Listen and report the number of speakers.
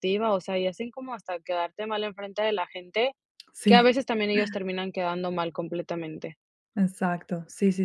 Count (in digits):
2